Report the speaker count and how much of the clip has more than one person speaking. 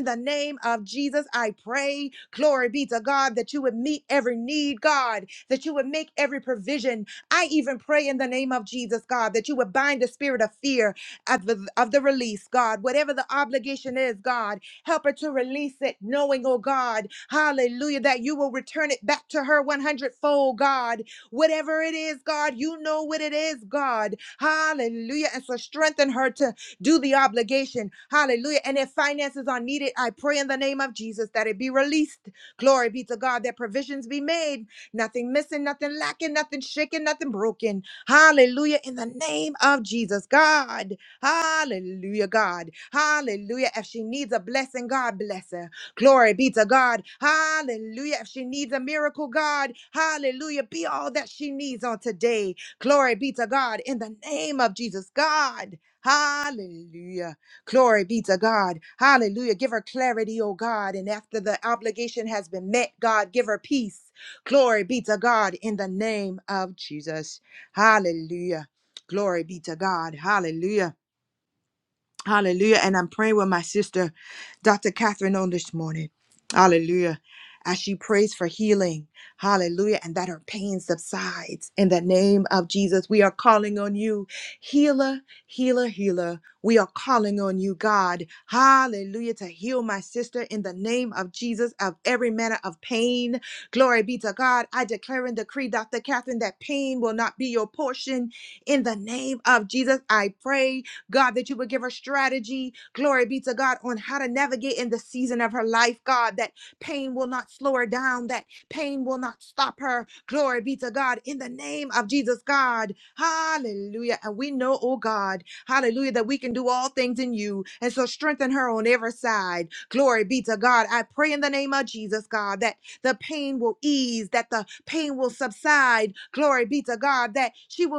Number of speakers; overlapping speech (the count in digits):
1, no overlap